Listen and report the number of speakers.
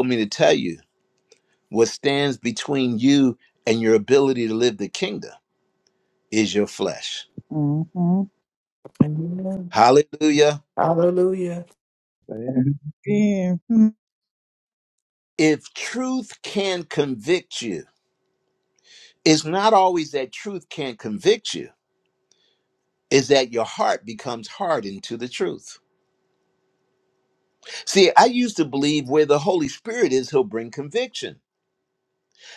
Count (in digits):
3